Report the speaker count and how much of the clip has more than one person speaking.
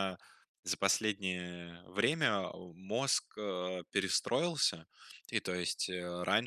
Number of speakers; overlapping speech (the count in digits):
1, no overlap